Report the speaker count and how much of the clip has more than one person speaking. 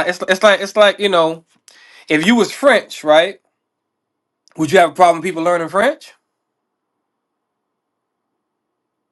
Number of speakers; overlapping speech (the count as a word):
one, no overlap